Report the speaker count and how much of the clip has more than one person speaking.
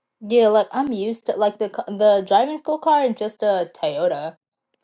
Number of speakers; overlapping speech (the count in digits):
1, no overlap